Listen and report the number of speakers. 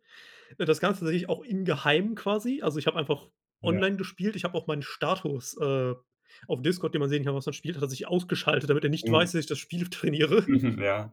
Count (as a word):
two